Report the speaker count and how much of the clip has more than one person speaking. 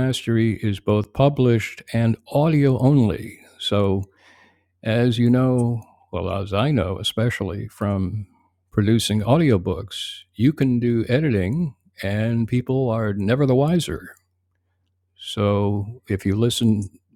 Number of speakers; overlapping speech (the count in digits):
1, no overlap